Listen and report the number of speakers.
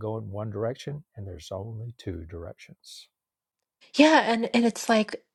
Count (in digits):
2